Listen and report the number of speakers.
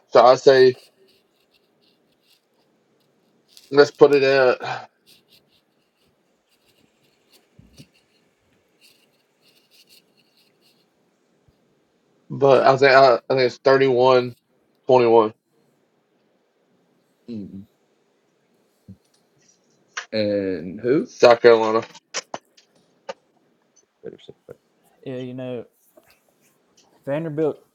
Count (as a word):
three